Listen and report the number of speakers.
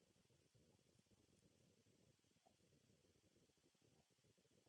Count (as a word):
zero